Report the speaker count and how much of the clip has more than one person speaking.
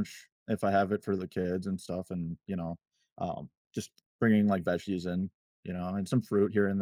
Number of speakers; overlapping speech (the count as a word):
one, no overlap